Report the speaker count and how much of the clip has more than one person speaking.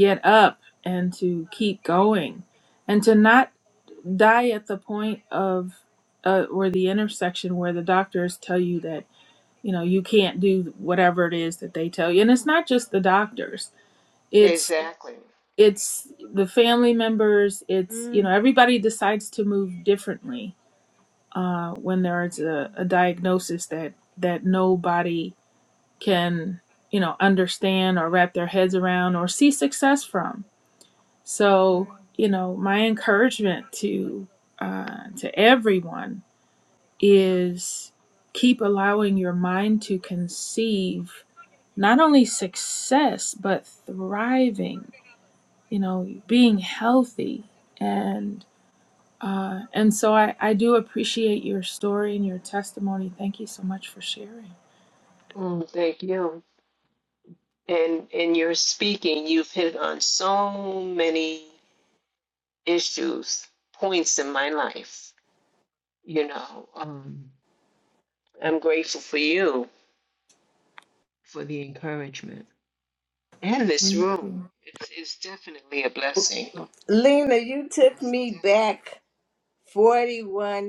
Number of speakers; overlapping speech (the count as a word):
three, about 1%